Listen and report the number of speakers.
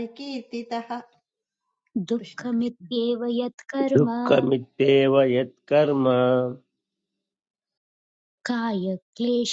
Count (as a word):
three